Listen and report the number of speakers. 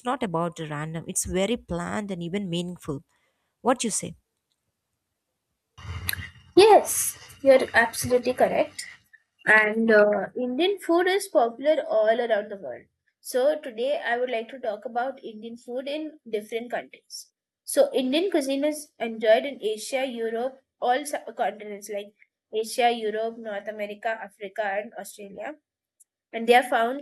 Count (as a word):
two